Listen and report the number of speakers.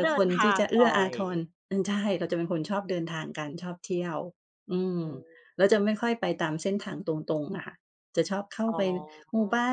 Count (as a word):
two